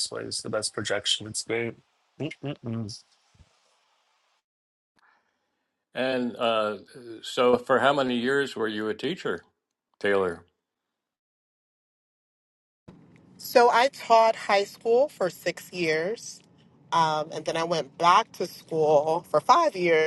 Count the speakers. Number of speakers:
three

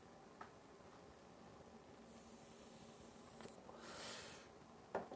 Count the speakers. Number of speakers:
zero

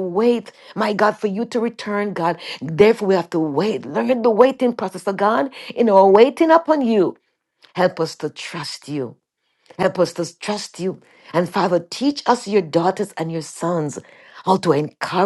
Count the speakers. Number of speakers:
one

